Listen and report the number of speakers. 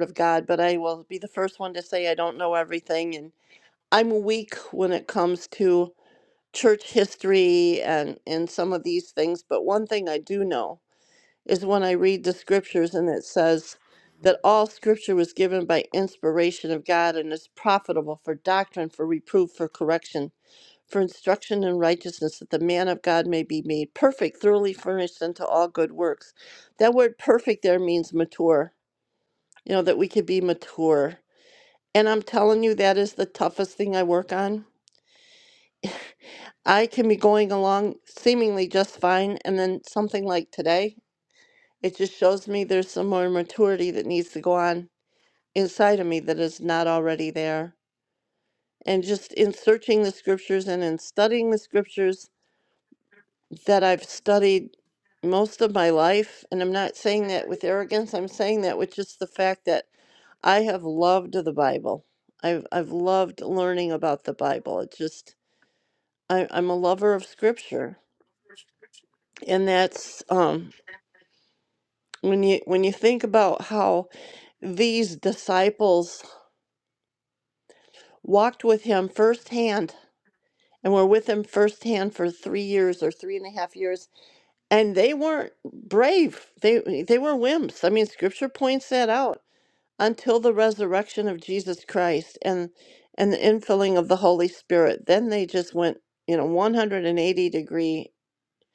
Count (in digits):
1